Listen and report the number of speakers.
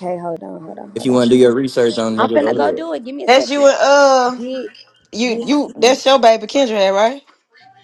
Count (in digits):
3